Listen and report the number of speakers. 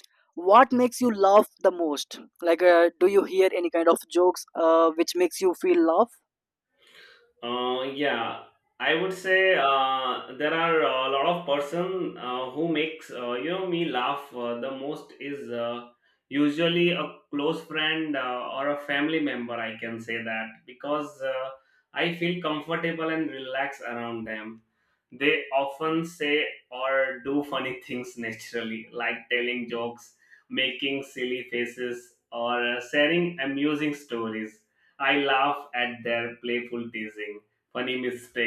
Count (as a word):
two